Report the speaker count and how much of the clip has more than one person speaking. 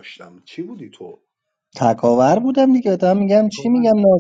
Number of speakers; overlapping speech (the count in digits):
2, about 10%